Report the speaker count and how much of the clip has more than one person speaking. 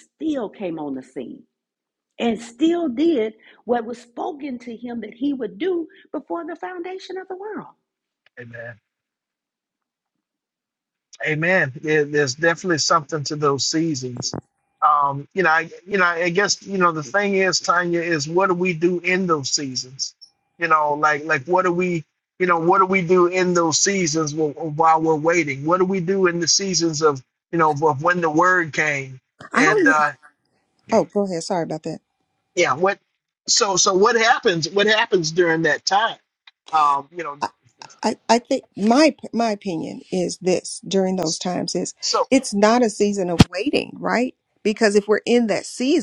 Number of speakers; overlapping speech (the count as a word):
three, about 1%